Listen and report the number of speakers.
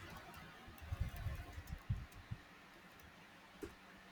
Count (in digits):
0